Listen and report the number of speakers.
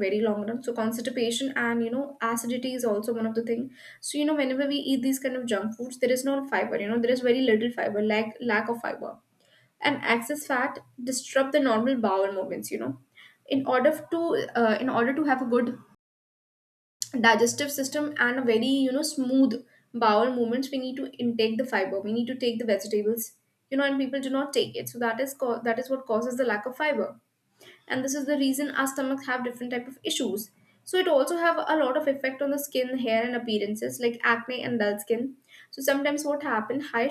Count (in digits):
1